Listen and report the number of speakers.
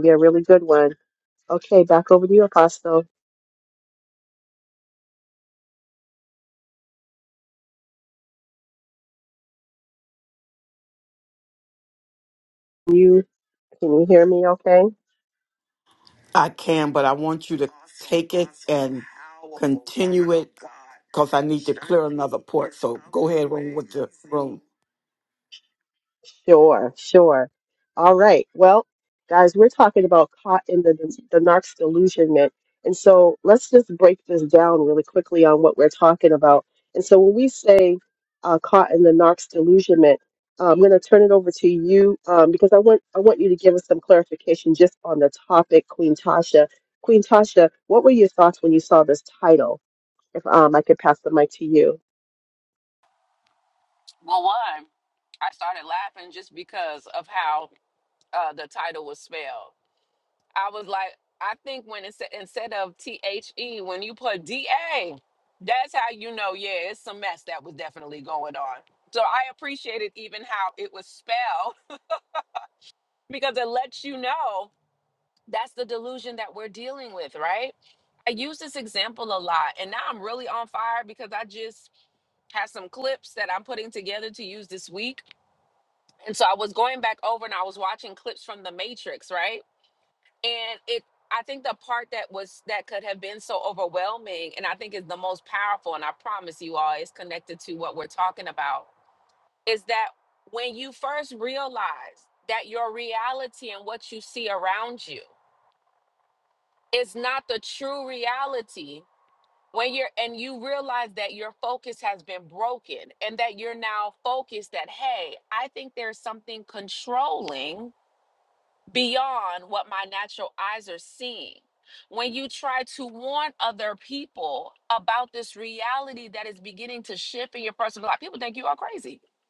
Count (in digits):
3